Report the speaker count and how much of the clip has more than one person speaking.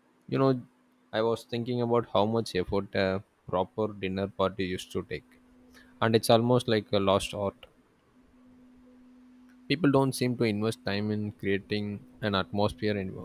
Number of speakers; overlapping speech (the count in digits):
1, no overlap